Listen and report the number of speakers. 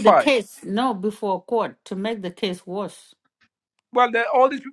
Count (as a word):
two